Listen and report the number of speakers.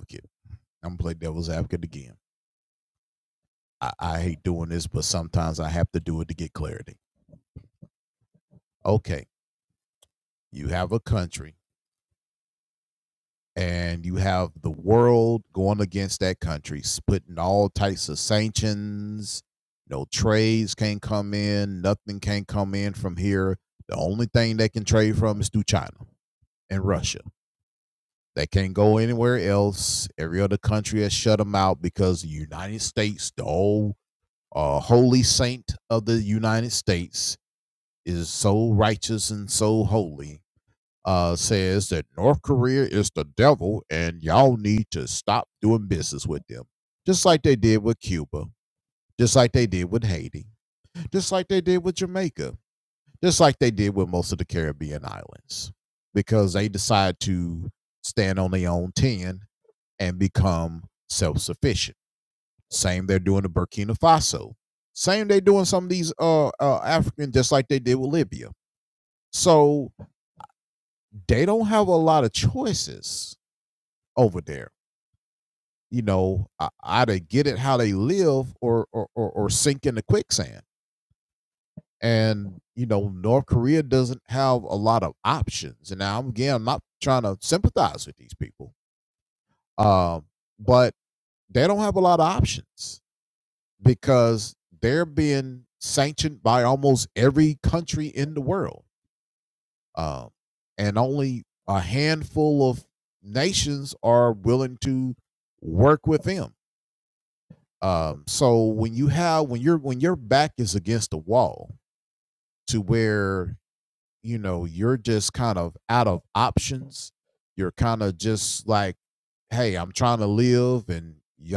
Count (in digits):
1